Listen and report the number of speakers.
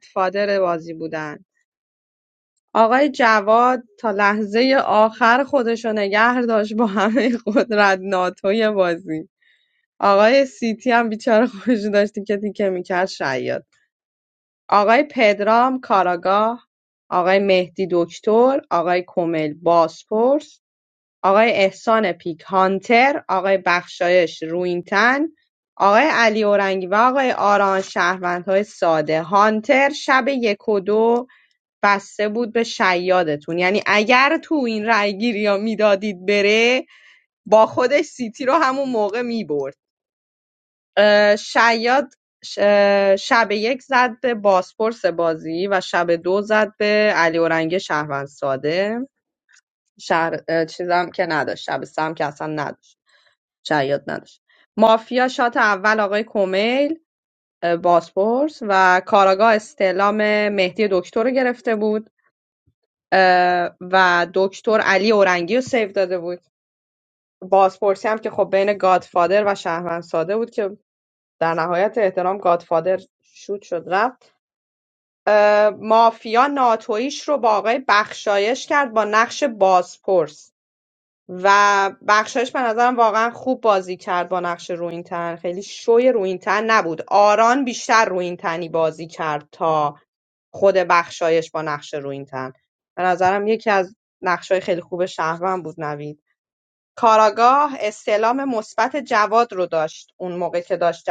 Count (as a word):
one